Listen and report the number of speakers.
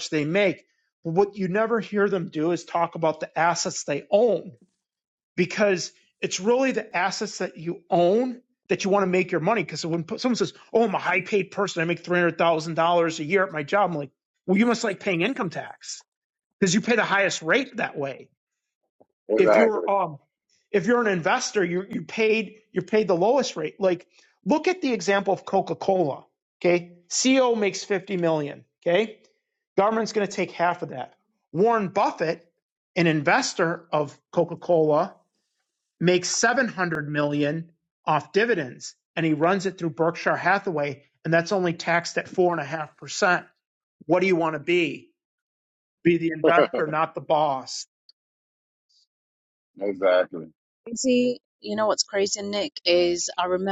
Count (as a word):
three